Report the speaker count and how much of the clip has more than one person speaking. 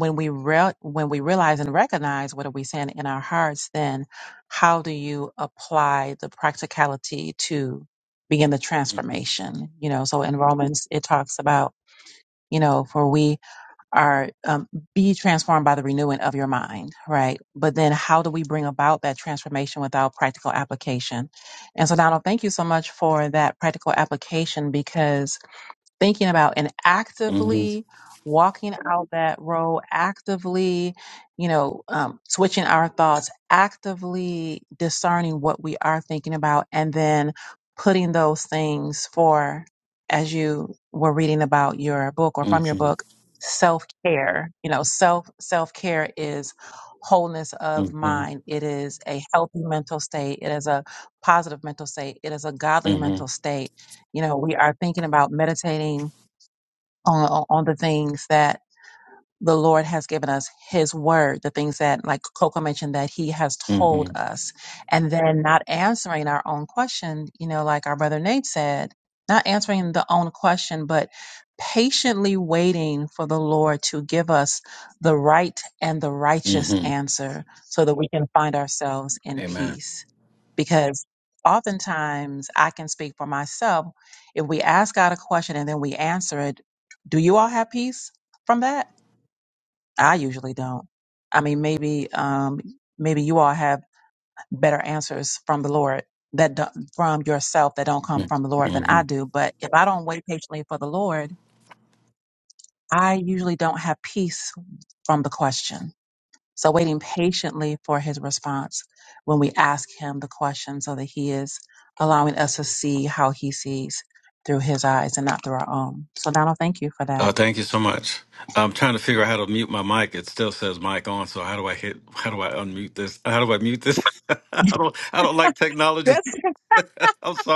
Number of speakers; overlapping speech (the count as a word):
two, about 3%